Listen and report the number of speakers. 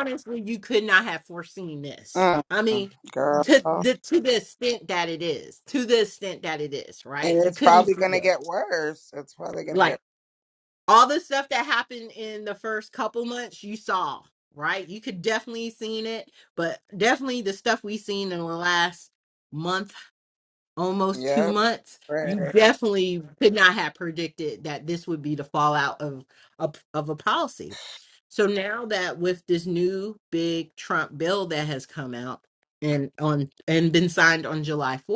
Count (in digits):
2